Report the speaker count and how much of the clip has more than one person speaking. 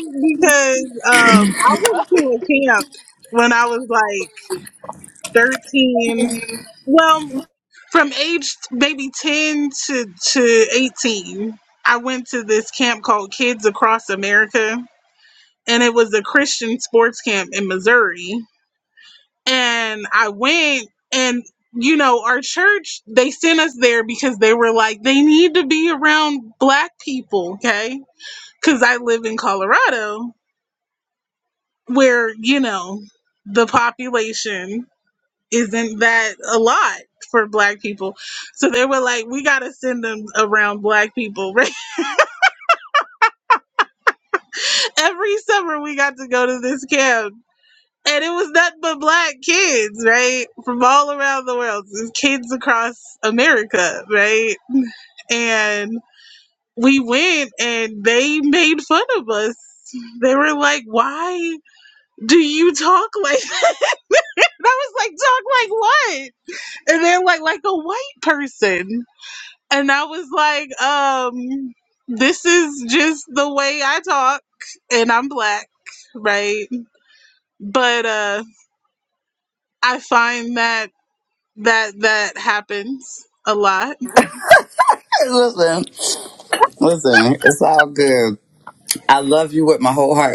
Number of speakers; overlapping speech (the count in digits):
2, no overlap